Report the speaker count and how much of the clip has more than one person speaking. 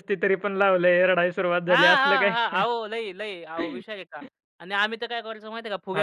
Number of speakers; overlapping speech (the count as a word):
two, about 18%